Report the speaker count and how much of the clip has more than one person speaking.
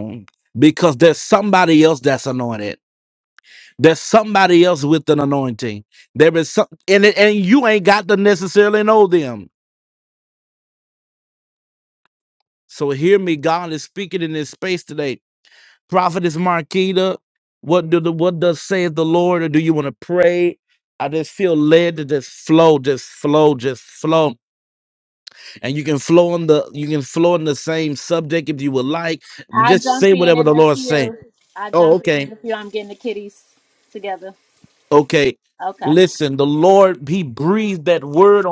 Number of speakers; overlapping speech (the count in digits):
2, about 6%